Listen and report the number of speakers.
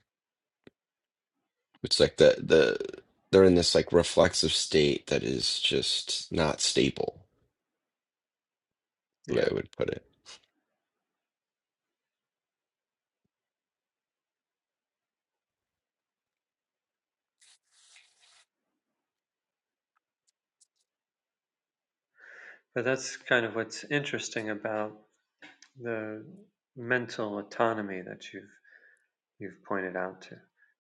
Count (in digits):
2